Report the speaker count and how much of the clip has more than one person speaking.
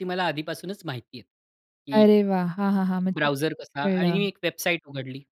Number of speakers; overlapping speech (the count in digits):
2, about 13%